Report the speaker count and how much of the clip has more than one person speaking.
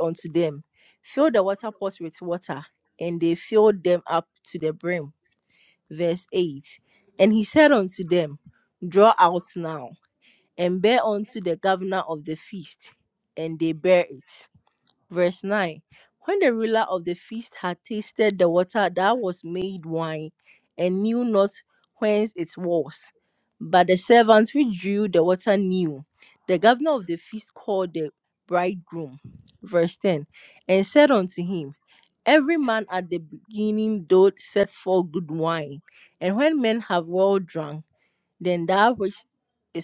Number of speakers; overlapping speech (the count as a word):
one, no overlap